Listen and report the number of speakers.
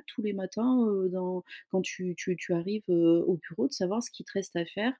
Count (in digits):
1